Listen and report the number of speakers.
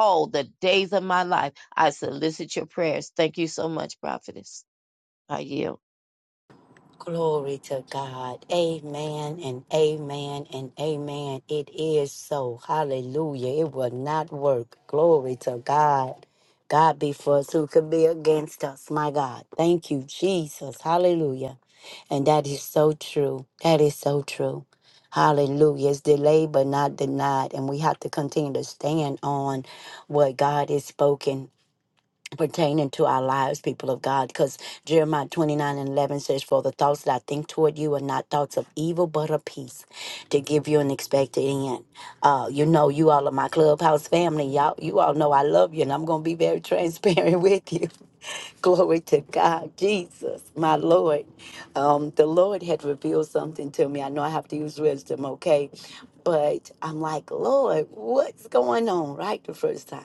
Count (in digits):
2